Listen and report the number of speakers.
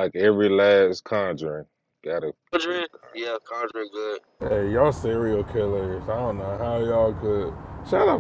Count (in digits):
3